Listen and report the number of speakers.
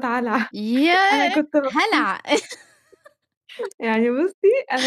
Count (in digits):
2